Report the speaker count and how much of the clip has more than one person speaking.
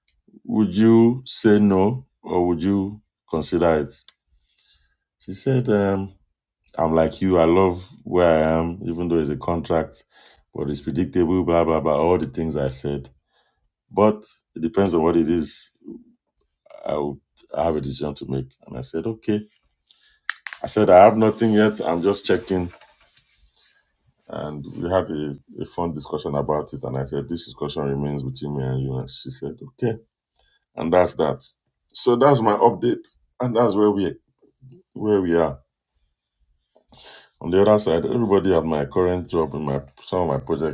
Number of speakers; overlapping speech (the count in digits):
1, no overlap